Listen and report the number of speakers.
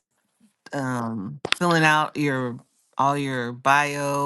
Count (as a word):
one